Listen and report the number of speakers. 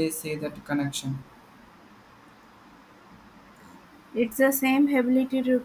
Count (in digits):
2